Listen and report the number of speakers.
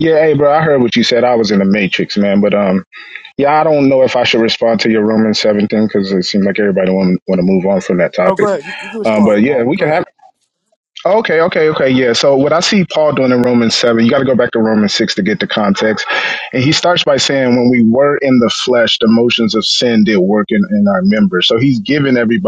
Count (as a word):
two